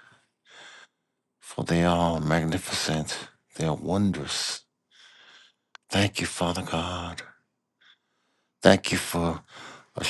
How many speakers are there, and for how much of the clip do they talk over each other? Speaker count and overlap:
one, no overlap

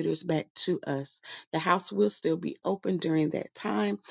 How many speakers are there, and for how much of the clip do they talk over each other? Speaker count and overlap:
one, no overlap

